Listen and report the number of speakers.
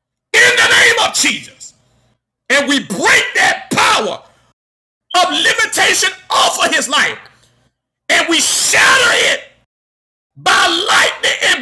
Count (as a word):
one